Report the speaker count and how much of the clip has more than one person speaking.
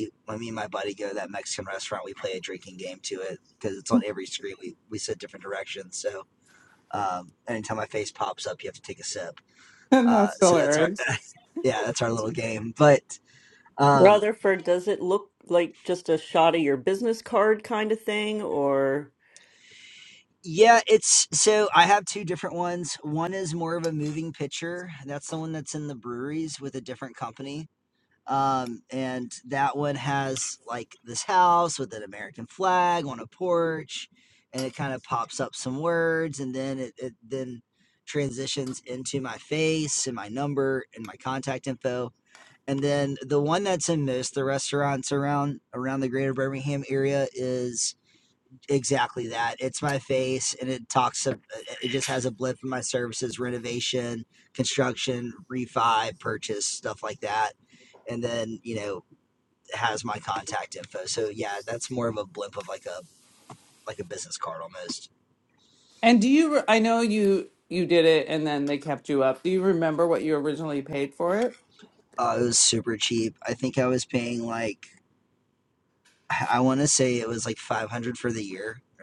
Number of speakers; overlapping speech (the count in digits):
3, about 1%